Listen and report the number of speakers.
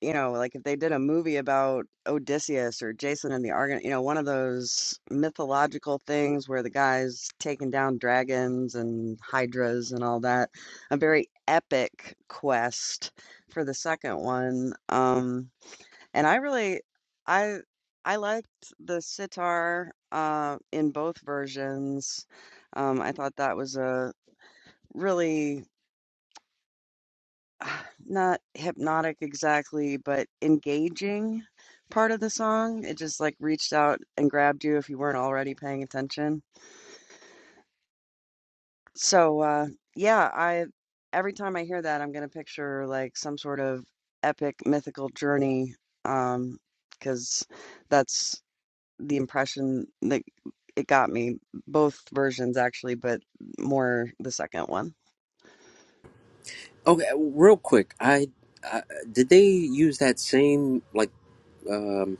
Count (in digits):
2